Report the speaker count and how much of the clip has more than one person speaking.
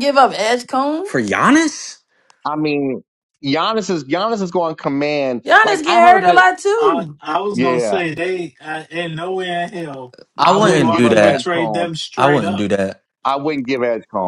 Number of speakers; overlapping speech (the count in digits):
4, about 26%